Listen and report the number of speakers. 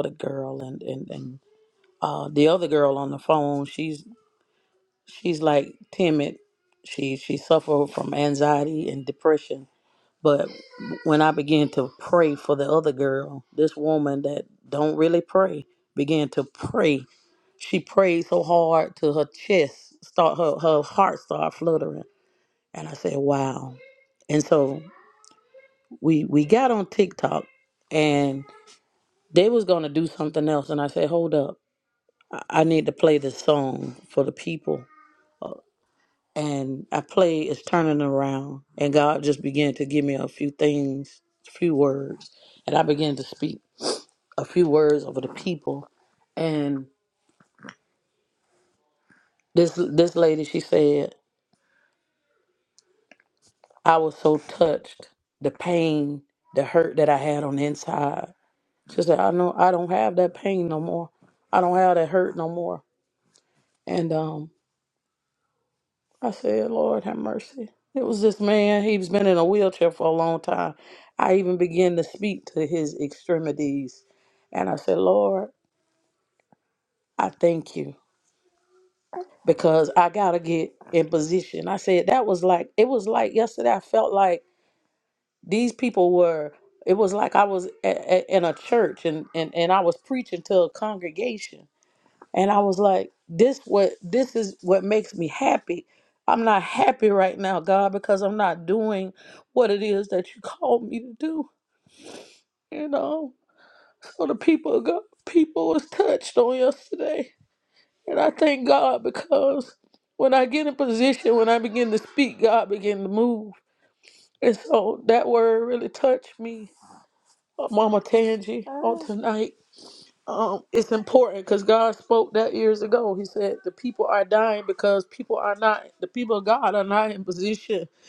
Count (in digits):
1